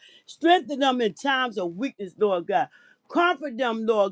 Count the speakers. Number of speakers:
one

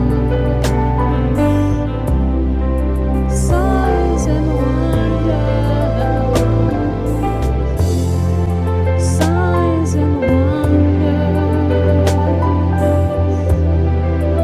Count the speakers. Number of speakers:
zero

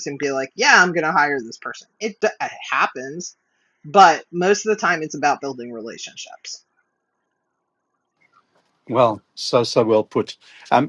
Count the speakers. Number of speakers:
two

